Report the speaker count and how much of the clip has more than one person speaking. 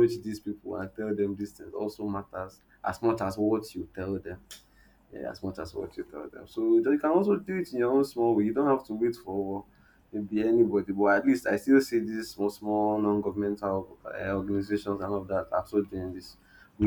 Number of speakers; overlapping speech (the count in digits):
1, no overlap